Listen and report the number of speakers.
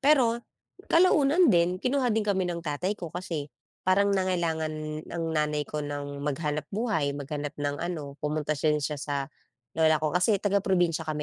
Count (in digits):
1